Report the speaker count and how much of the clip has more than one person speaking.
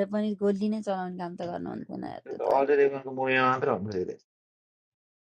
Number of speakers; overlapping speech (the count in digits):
2, about 1%